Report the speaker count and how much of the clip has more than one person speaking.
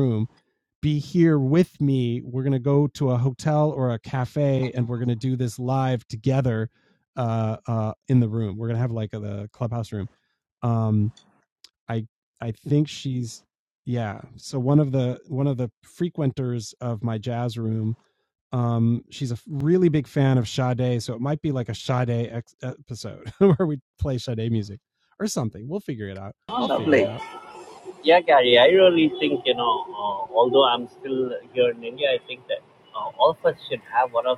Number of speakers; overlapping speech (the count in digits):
2, about 2%